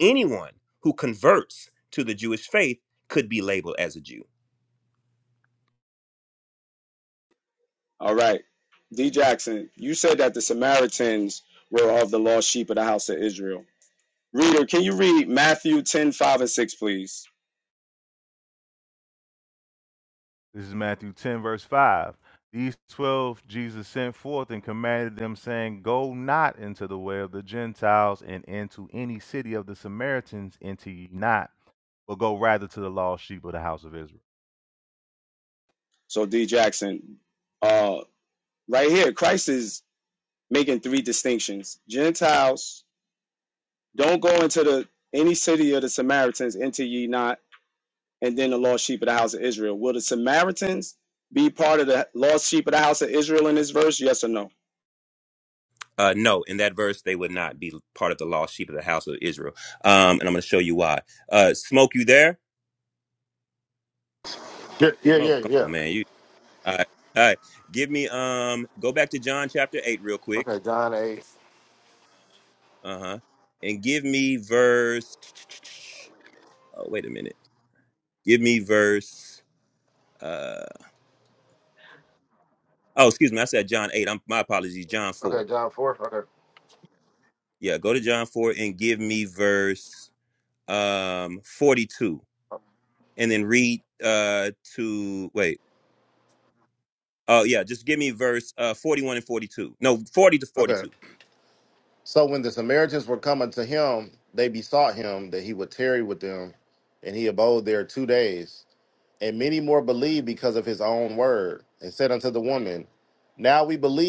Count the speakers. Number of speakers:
4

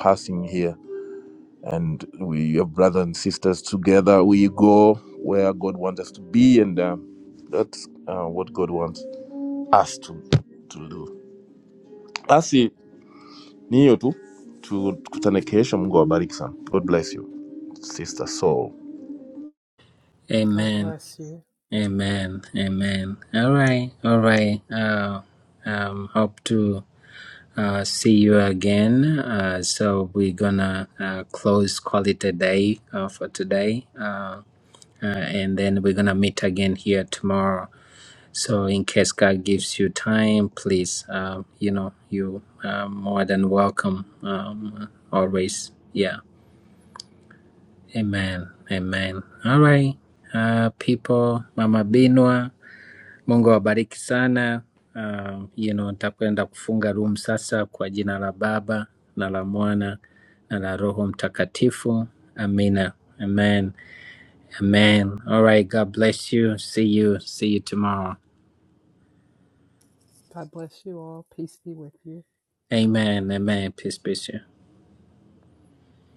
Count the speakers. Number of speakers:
3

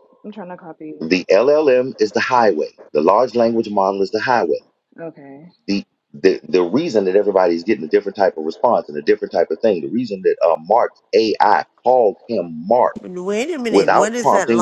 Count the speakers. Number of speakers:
3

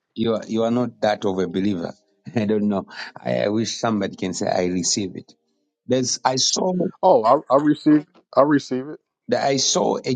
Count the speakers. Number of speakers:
2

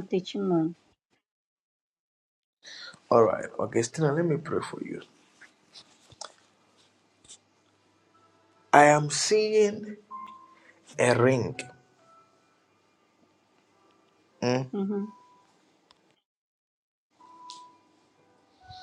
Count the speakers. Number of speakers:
2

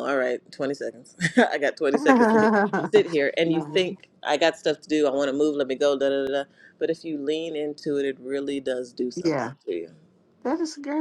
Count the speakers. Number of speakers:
2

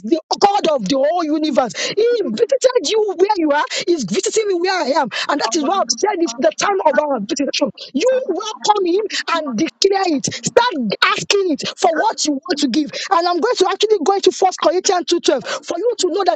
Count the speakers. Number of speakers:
1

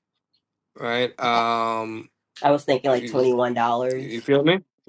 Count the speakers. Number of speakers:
2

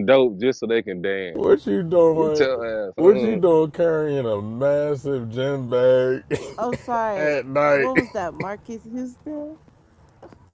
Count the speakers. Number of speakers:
3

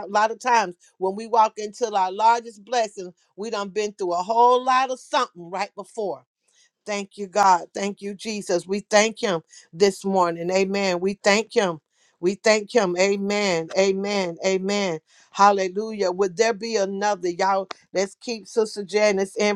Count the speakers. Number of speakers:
1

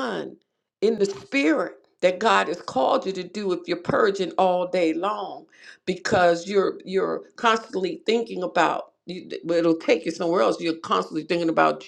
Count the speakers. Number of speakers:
1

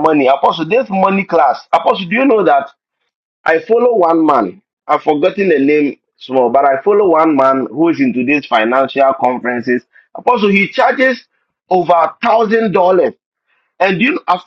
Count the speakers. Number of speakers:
1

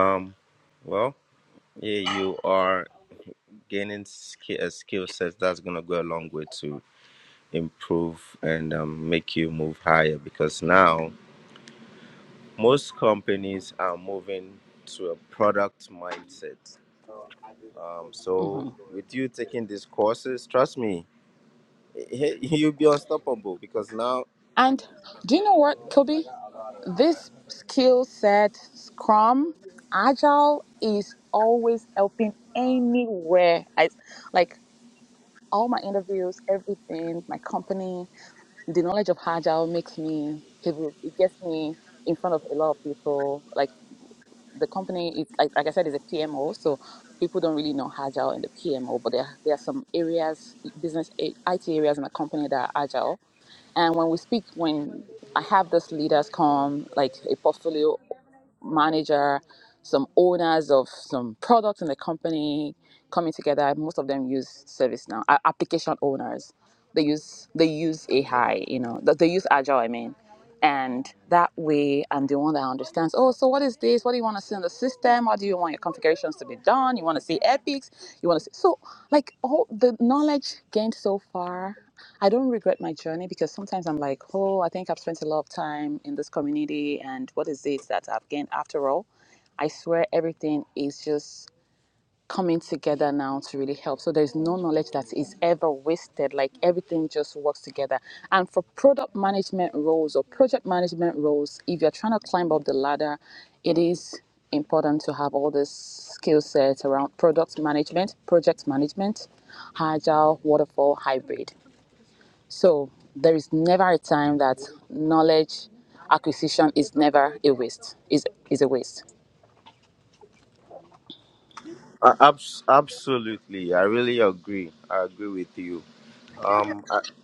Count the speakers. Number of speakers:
3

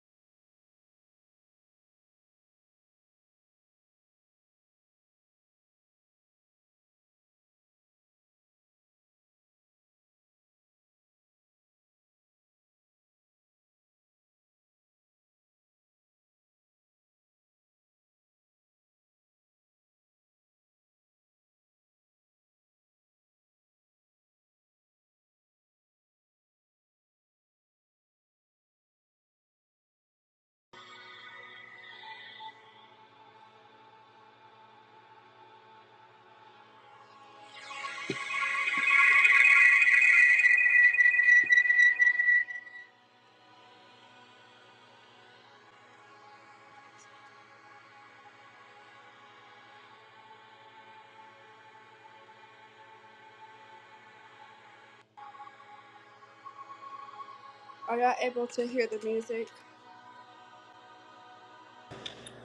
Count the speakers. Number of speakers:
1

